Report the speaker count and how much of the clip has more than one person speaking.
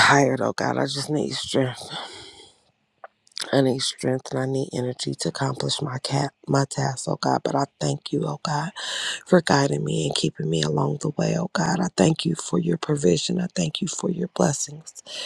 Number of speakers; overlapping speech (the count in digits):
1, no overlap